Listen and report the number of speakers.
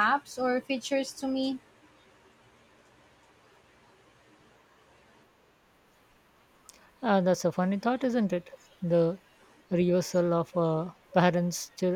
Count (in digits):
2